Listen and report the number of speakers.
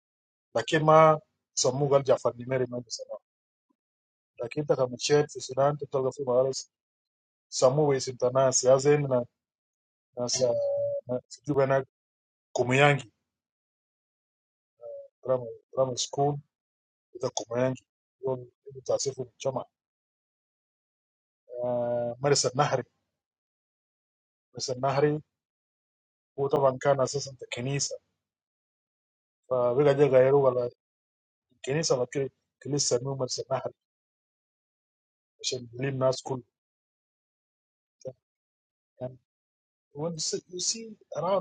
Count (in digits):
1